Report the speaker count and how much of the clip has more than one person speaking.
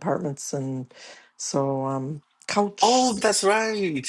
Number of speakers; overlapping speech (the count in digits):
2, about 7%